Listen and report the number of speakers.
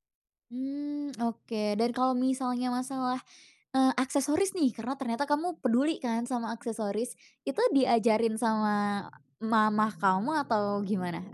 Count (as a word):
one